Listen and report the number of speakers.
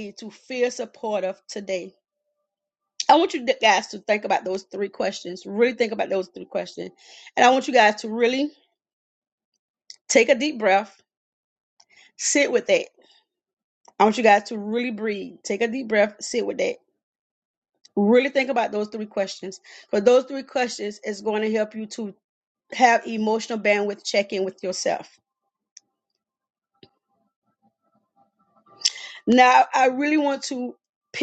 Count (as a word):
one